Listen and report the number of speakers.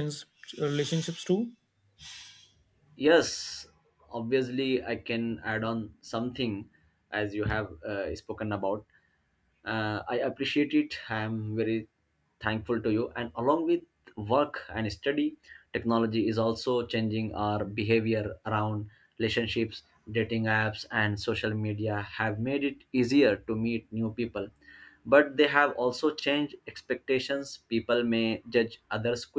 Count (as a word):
two